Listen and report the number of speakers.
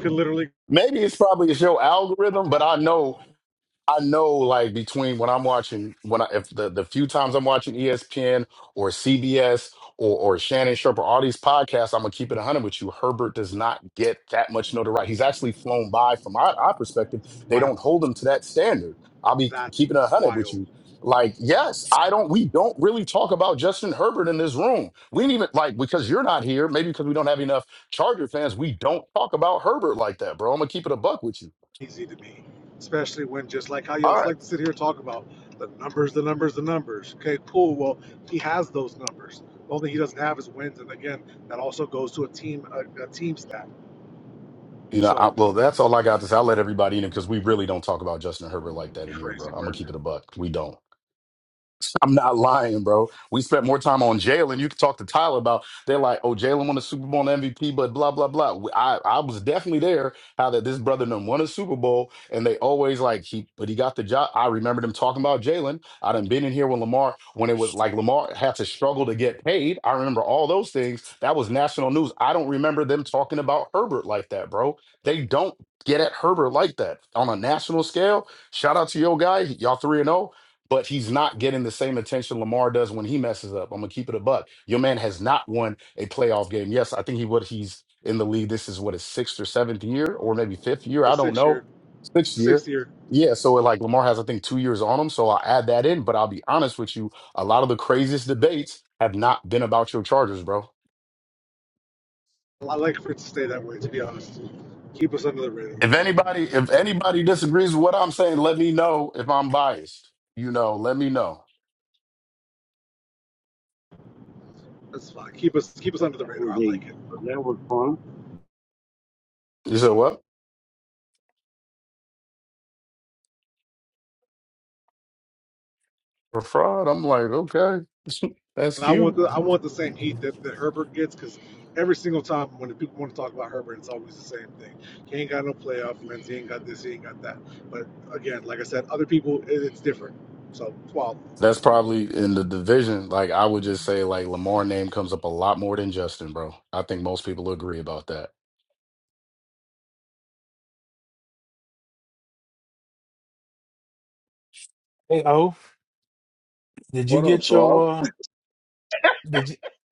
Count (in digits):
4